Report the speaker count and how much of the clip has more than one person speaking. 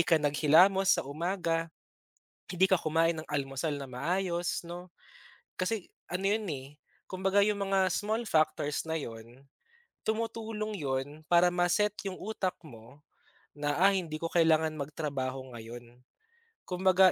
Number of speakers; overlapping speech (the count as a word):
one, no overlap